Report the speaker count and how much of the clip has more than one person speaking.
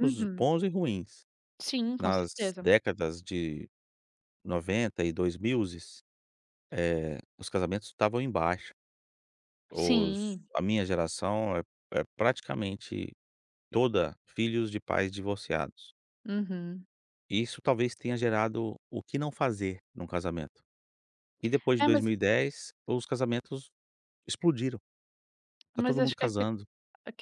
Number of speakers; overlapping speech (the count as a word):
two, about 8%